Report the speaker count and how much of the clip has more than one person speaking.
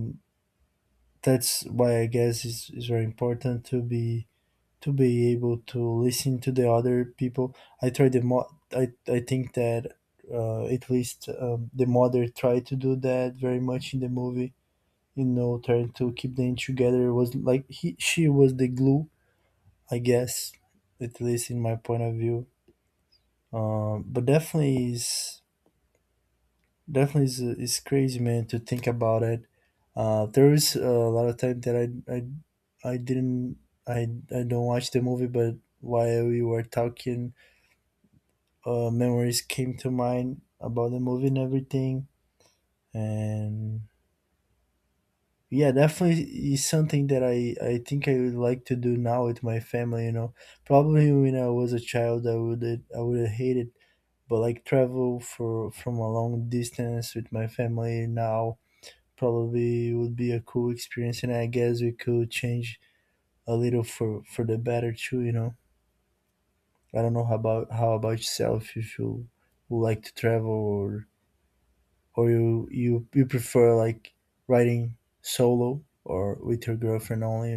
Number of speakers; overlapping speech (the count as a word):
one, no overlap